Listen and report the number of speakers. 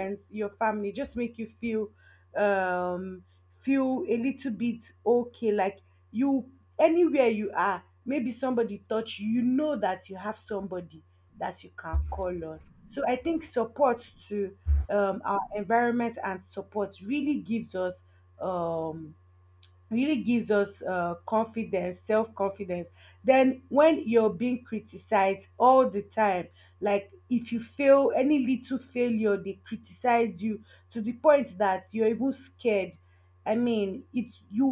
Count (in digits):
1